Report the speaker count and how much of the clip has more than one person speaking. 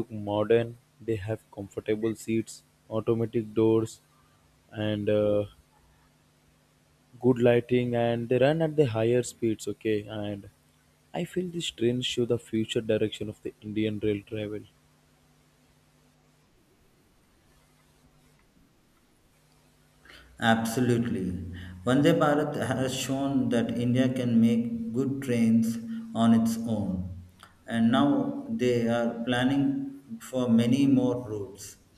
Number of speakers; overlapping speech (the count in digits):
2, no overlap